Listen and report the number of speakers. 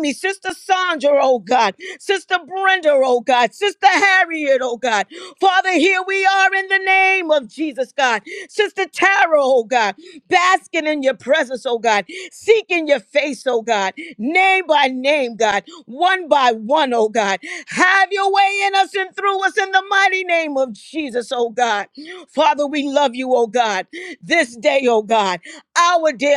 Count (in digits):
1